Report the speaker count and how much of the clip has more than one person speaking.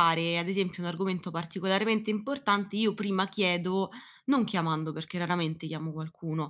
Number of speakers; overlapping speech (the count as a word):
one, no overlap